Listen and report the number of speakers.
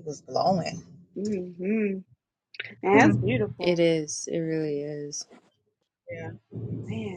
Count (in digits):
3